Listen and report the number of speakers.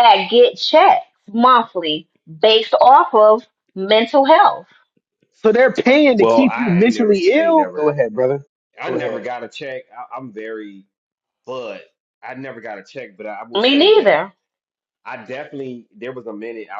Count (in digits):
3